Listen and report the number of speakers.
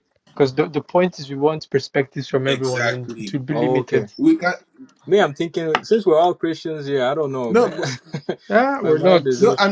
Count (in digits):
3